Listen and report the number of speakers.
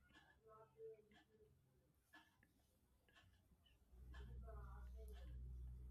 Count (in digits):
0